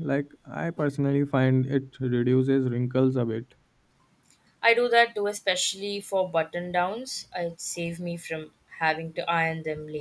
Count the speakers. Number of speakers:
2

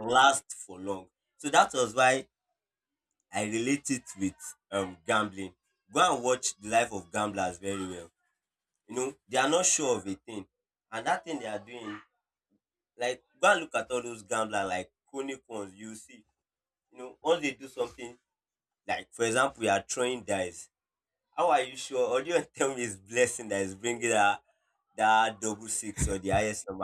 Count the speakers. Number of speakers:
1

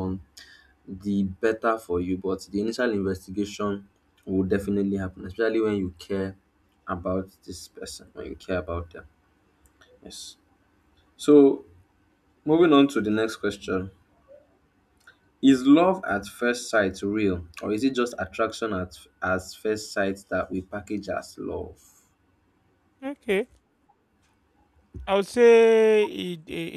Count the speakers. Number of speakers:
2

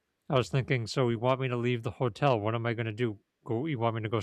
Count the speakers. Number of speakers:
1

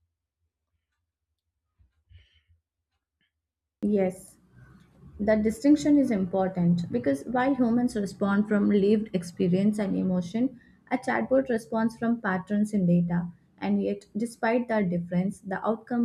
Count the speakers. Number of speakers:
1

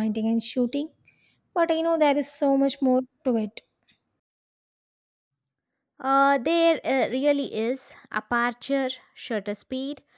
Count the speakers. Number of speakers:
2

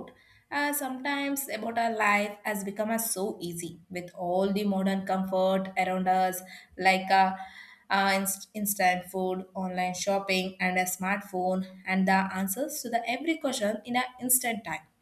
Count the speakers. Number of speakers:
1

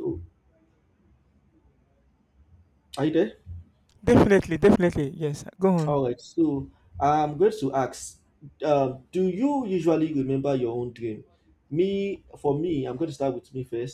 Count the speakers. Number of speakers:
2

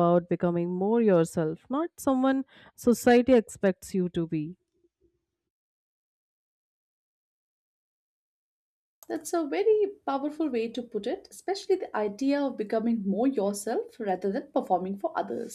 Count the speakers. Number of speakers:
2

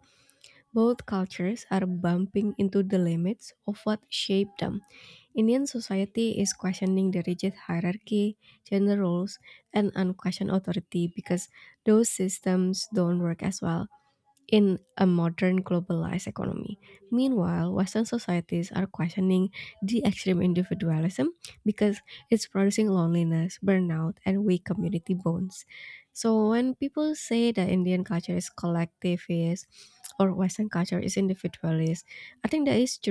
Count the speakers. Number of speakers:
1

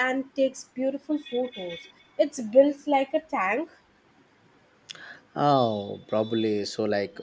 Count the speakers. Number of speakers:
2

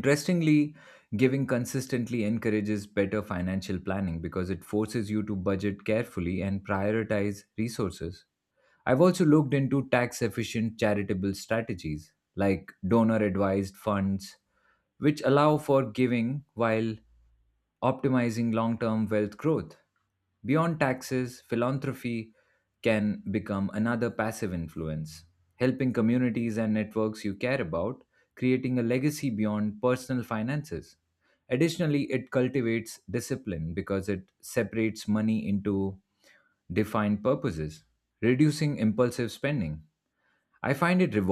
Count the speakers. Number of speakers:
1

